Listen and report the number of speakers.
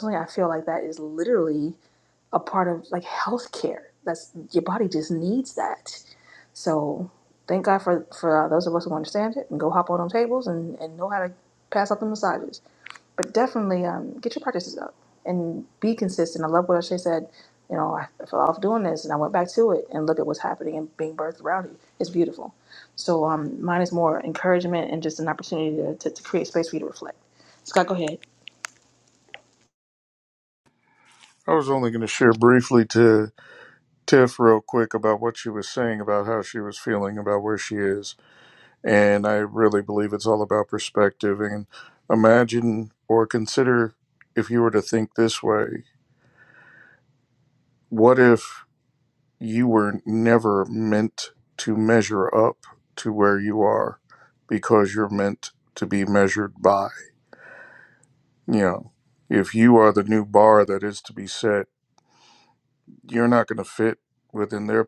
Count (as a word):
two